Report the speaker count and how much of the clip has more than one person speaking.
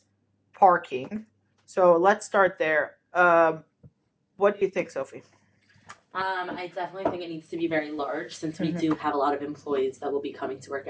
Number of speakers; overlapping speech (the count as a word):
two, no overlap